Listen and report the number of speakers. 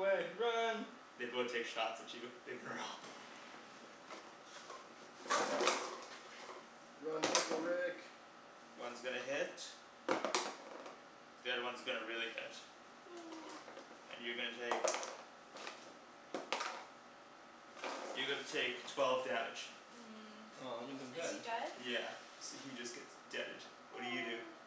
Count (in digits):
4